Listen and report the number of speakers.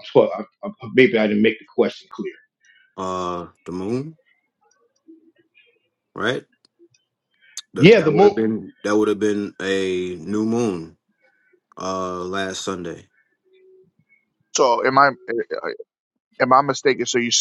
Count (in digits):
3